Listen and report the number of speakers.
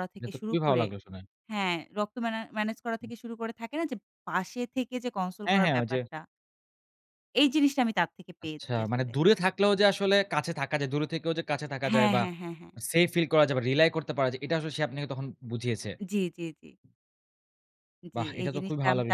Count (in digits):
2